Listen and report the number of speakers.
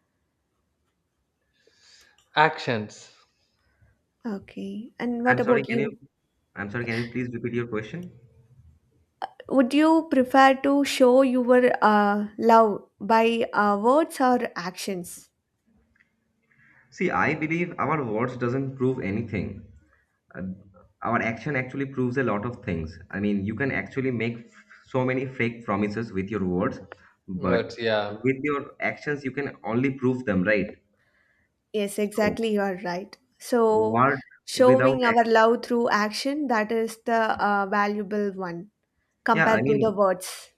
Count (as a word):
three